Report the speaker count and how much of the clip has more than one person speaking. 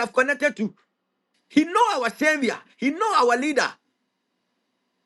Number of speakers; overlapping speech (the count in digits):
1, no overlap